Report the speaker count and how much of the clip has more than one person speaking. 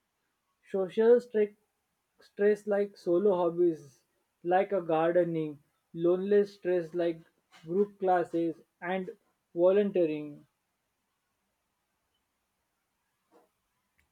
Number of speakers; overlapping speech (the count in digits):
1, no overlap